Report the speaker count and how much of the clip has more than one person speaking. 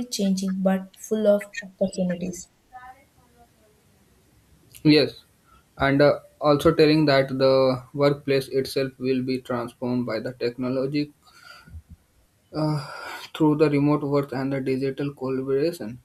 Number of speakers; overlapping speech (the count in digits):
2, no overlap